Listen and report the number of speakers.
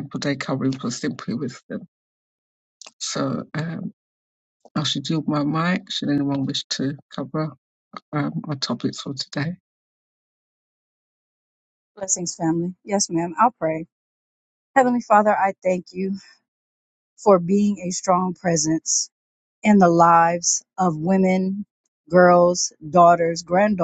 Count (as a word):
two